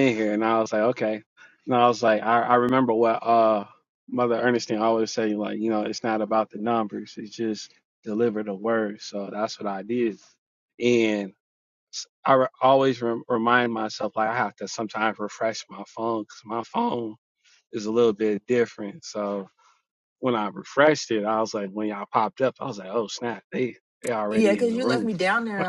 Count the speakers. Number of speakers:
2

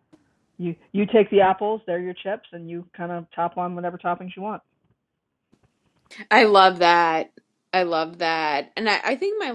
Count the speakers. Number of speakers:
2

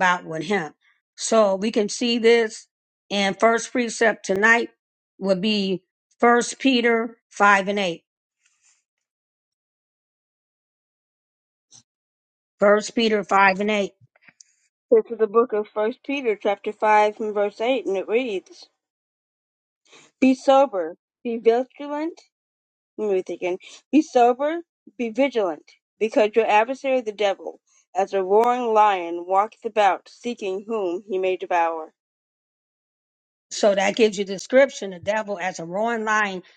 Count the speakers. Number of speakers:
2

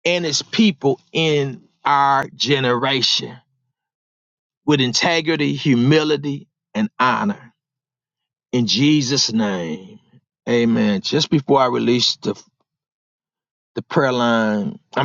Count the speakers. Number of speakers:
1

